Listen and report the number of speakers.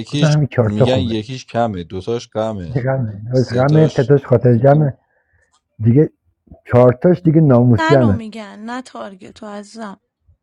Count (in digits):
3